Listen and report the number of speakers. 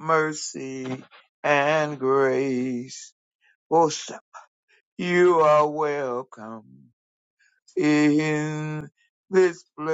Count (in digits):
1